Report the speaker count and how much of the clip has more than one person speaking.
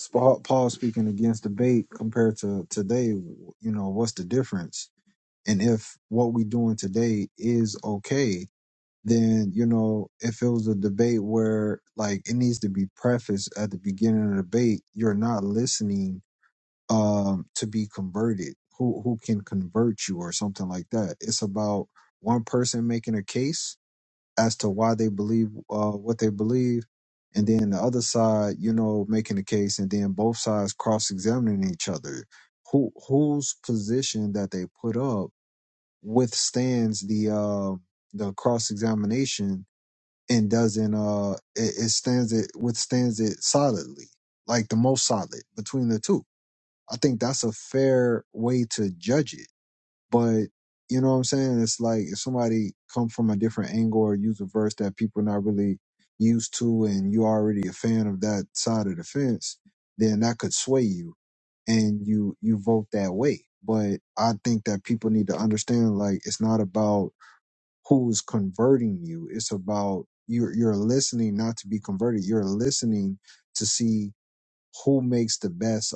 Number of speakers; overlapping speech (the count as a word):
one, no overlap